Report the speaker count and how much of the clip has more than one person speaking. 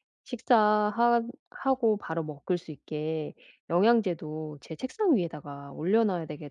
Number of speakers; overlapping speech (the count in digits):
1, no overlap